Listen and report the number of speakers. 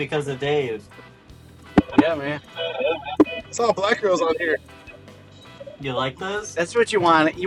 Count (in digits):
3